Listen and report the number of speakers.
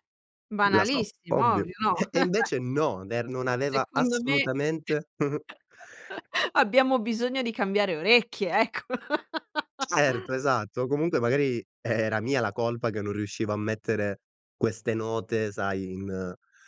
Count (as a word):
two